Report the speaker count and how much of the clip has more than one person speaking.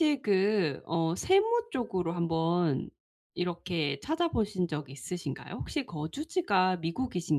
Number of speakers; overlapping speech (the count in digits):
1, no overlap